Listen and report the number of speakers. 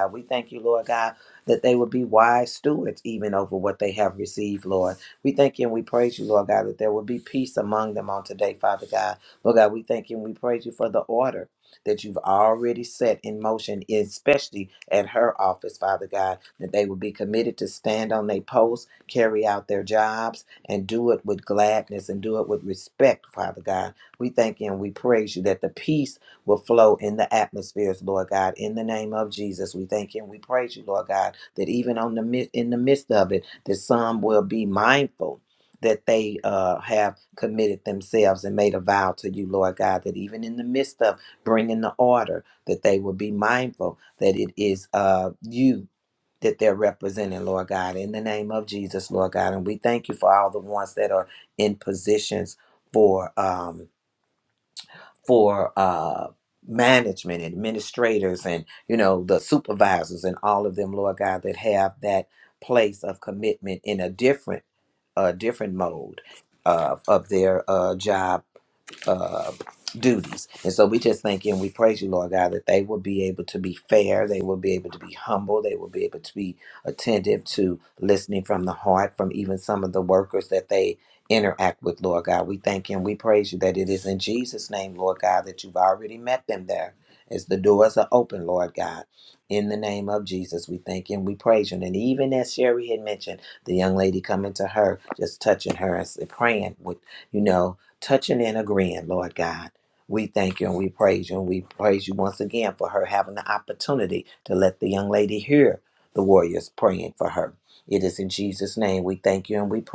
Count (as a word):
one